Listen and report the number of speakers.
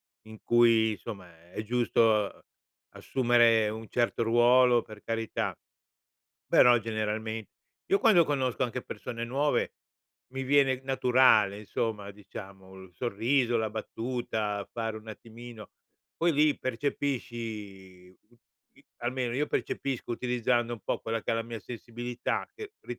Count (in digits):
1